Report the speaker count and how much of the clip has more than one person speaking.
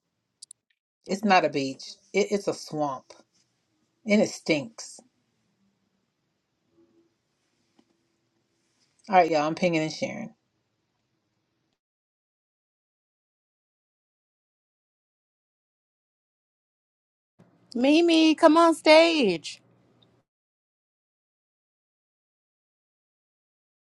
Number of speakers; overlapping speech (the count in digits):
2, no overlap